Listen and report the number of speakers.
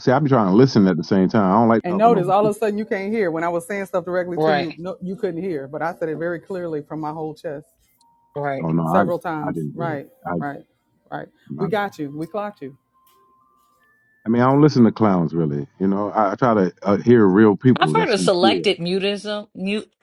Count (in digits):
3